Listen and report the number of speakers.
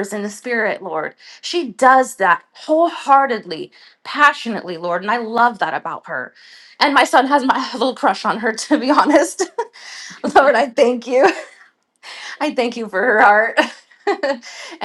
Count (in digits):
1